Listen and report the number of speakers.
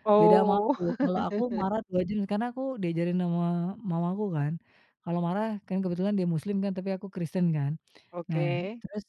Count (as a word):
two